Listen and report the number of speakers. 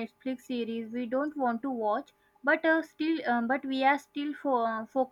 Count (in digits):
1